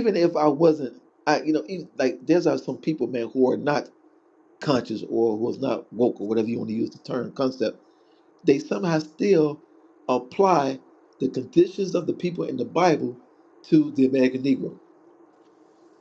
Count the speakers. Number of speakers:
1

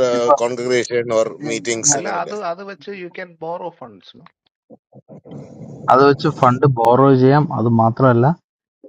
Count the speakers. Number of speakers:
3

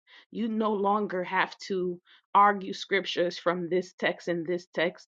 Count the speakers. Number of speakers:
1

